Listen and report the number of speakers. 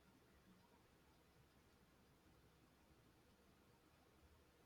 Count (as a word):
zero